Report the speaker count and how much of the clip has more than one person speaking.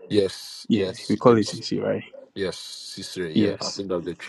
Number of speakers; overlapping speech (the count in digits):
2, about 31%